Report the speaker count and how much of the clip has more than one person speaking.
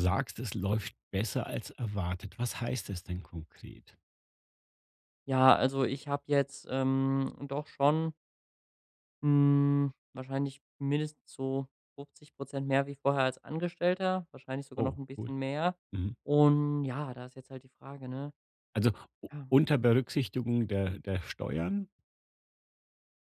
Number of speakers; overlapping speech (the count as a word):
two, about 3%